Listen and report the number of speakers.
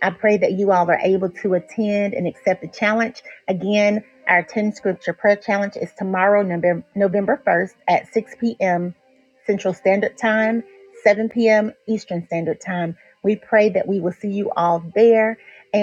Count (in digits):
1